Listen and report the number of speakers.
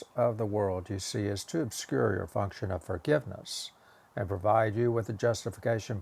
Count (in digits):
1